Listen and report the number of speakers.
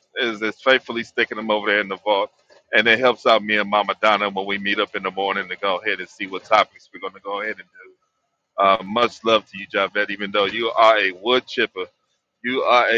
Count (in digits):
1